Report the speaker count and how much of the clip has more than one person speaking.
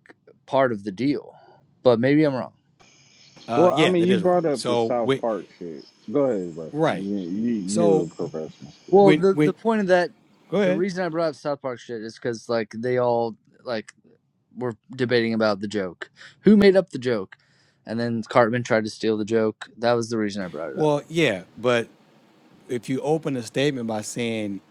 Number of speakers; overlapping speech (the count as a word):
three, about 13%